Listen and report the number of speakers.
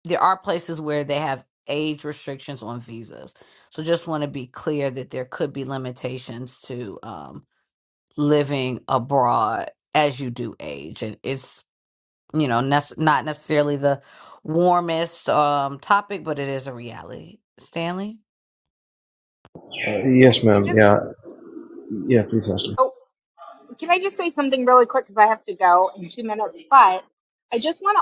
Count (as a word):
three